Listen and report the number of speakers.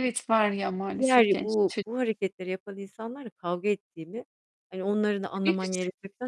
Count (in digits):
2